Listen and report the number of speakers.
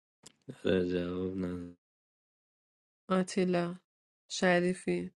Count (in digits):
2